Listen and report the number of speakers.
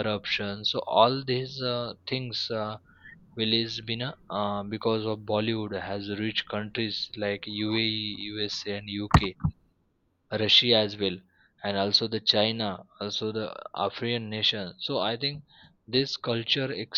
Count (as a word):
one